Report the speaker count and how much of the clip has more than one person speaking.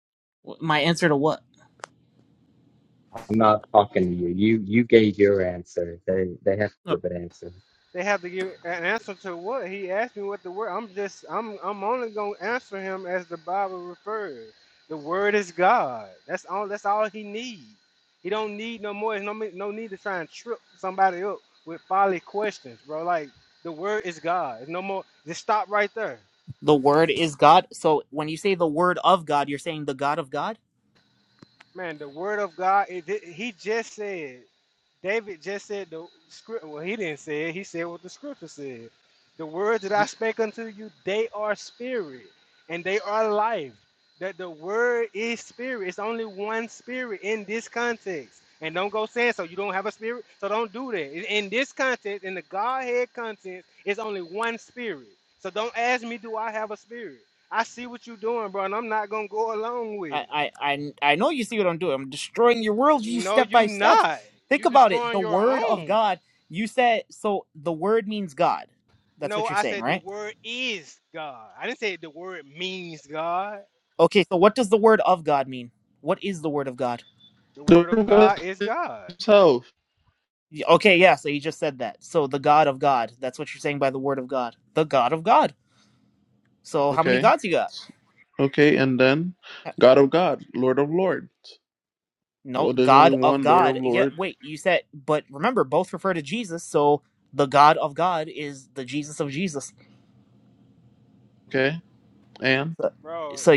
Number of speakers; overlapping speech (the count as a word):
four, about 6%